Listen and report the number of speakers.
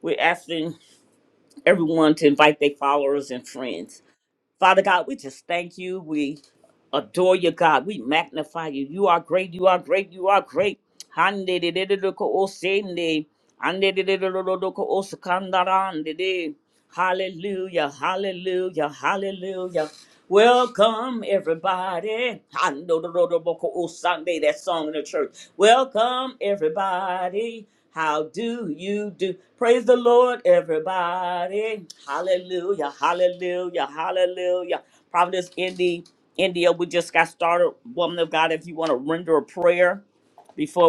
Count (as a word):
one